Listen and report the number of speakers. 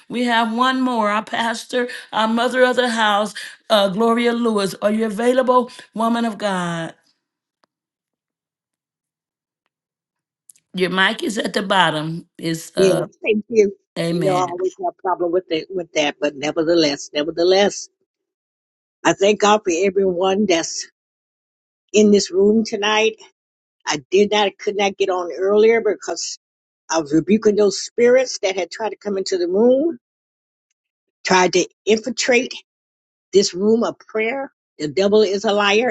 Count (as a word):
two